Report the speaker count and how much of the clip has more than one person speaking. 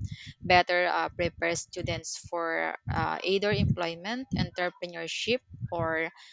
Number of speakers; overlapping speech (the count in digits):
1, no overlap